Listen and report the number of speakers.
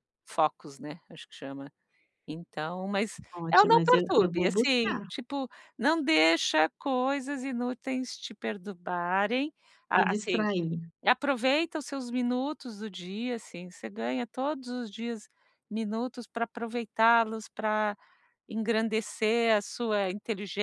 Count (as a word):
two